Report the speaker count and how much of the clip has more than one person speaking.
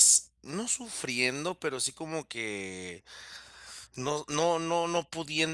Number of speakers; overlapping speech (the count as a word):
one, no overlap